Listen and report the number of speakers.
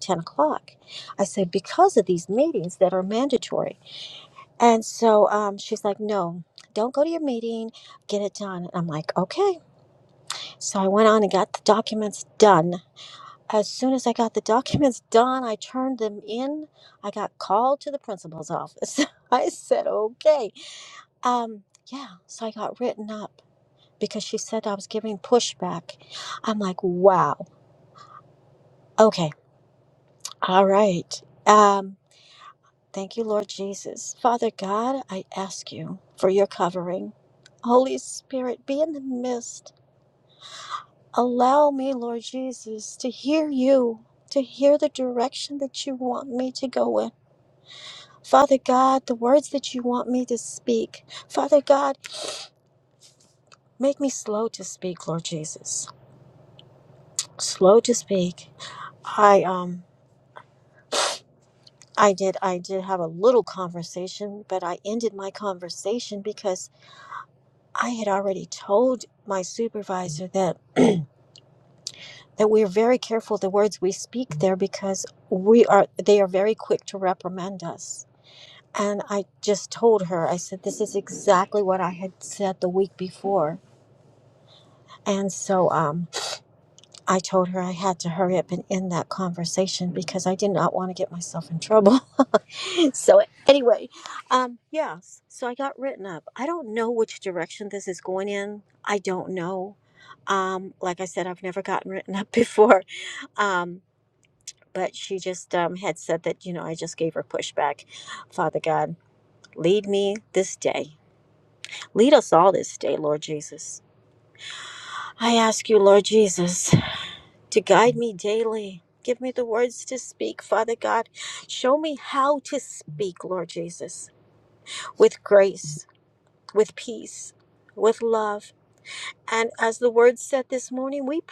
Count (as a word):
one